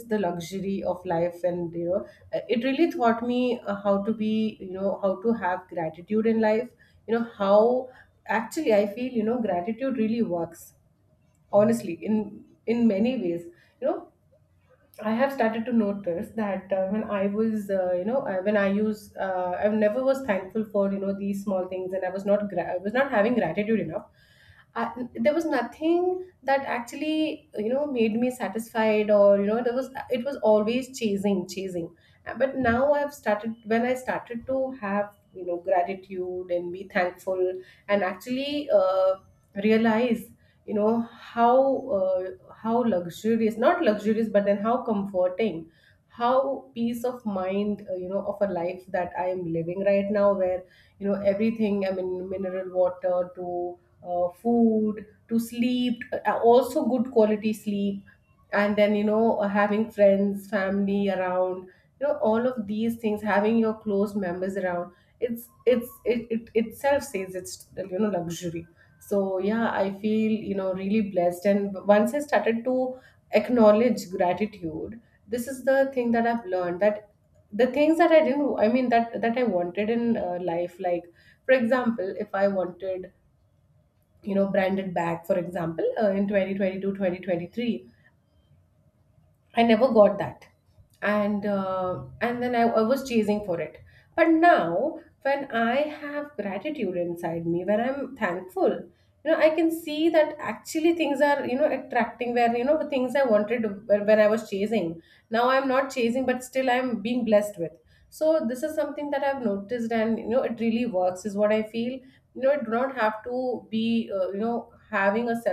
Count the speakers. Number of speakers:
one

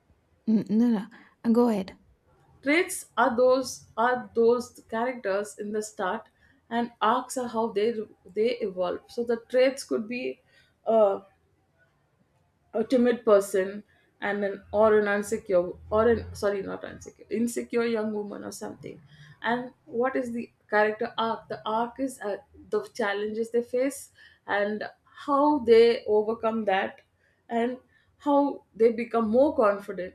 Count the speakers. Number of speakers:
two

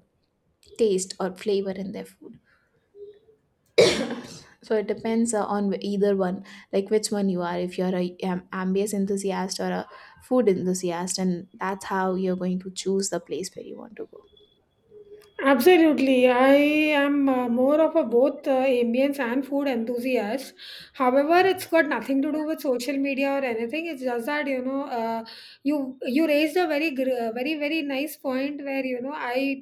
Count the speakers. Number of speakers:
two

